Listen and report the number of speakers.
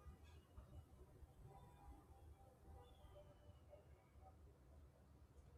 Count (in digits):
0